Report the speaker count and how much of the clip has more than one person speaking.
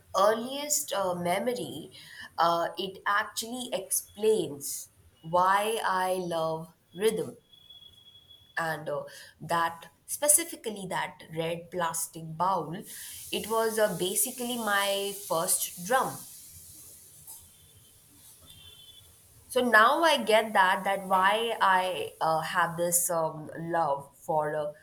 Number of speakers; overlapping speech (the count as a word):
one, no overlap